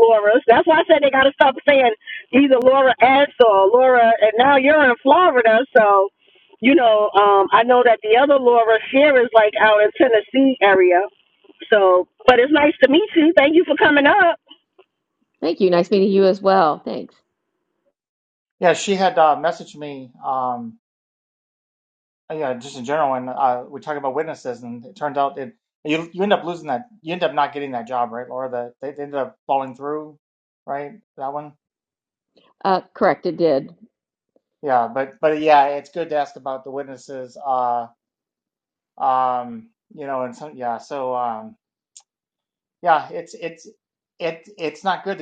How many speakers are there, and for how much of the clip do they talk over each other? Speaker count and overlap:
3, no overlap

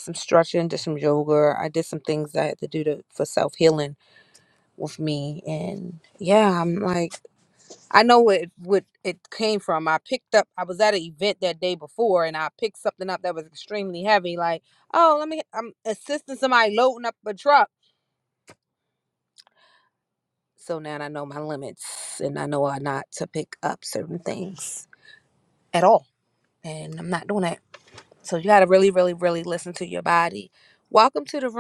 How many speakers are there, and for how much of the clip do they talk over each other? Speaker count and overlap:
1, no overlap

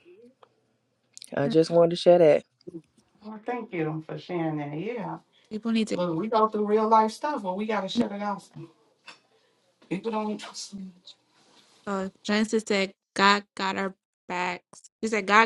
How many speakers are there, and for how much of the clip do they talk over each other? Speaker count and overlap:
3, about 1%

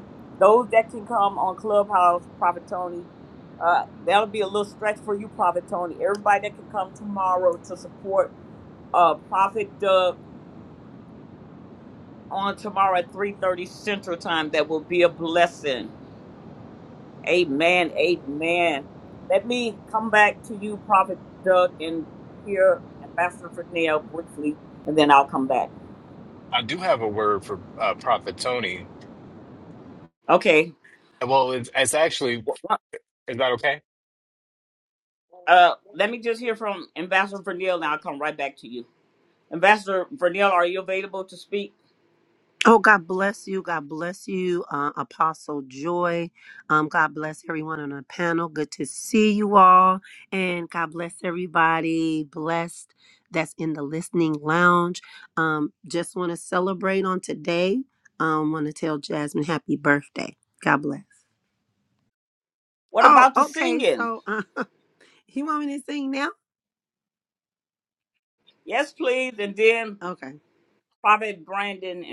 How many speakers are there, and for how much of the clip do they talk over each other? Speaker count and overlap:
3, about 1%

